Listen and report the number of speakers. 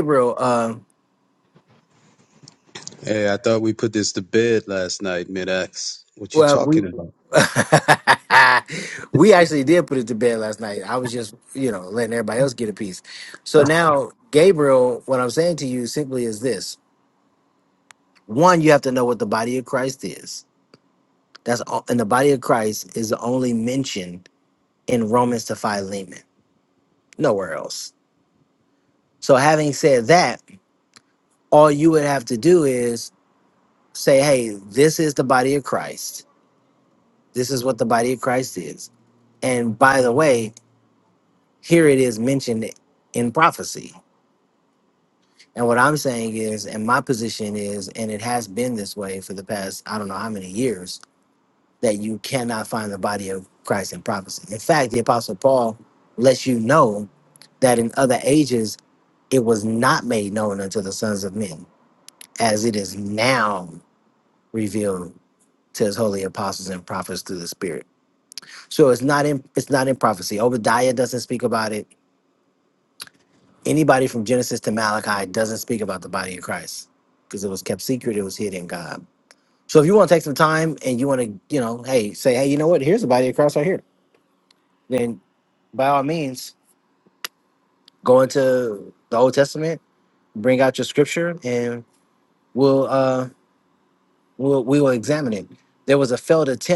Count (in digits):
2